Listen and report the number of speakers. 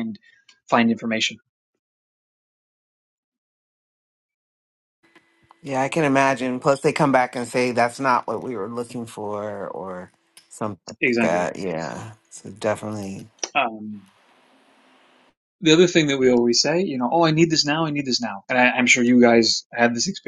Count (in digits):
2